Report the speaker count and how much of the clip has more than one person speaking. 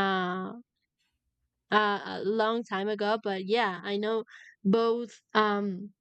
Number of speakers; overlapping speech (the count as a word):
one, no overlap